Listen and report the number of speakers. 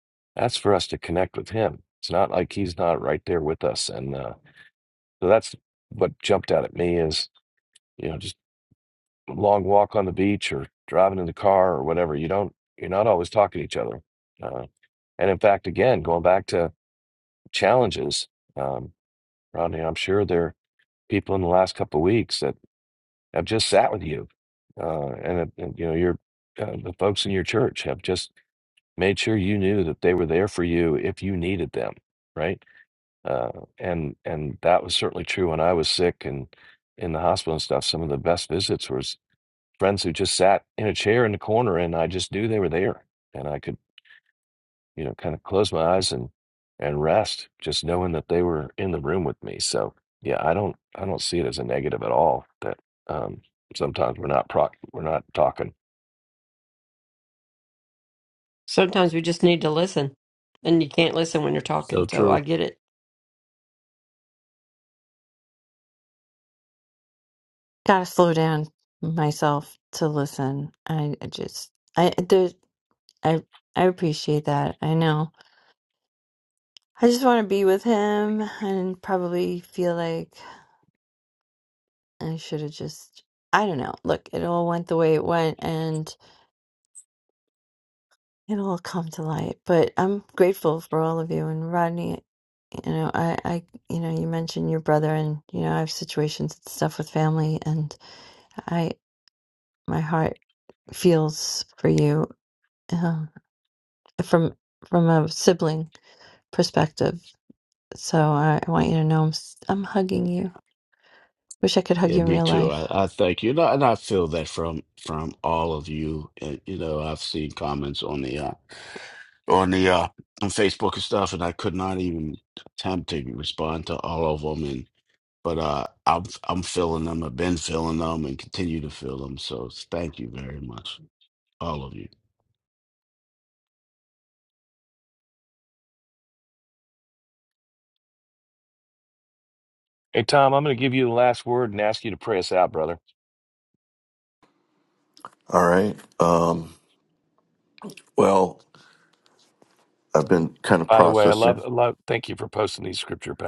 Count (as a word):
five